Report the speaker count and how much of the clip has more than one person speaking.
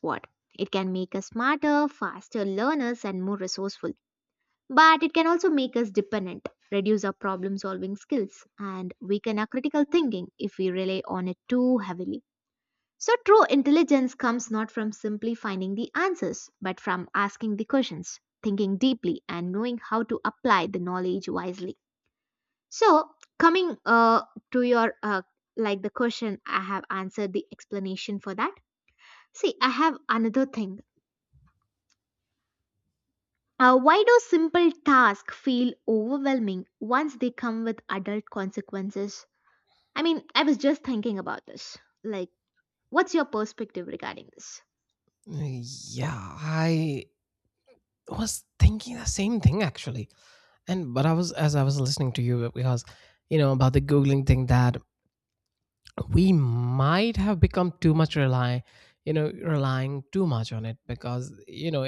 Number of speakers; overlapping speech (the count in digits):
2, no overlap